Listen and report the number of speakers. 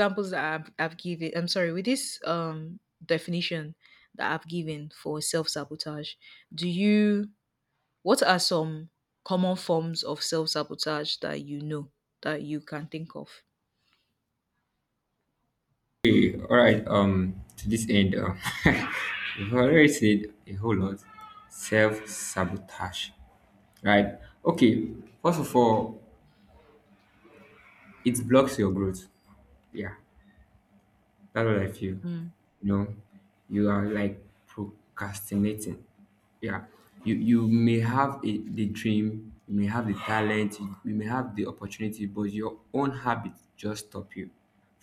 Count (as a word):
two